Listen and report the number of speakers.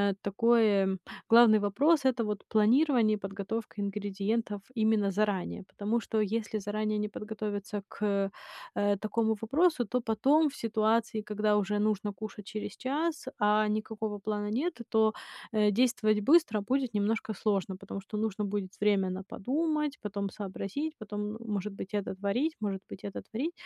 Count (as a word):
one